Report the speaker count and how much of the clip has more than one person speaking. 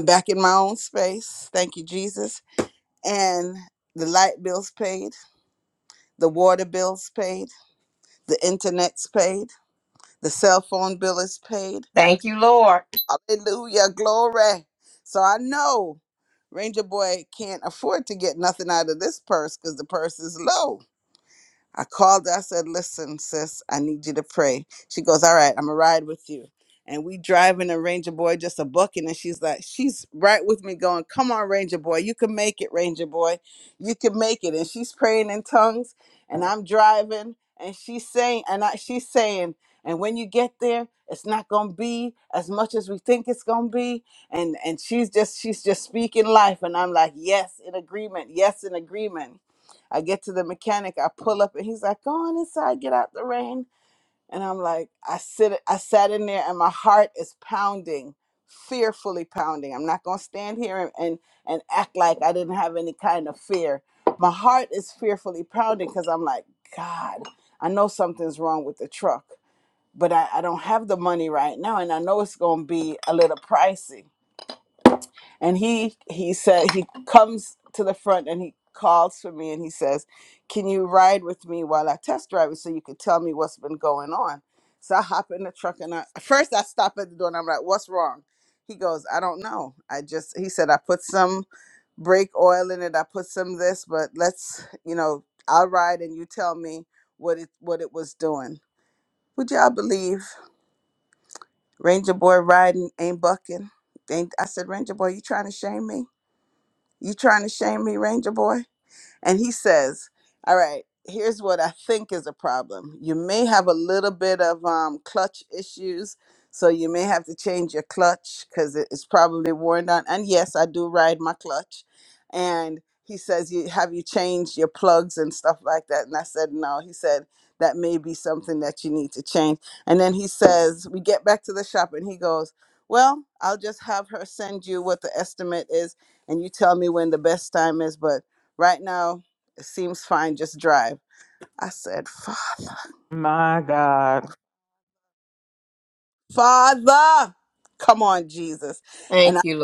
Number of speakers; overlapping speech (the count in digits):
3, under 1%